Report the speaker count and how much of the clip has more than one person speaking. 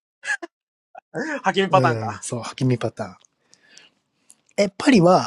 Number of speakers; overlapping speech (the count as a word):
two, about 10%